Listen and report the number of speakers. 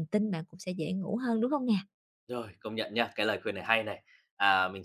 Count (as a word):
two